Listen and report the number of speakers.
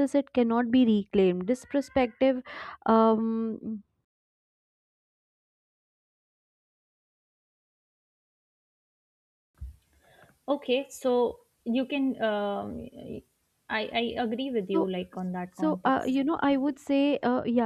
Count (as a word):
two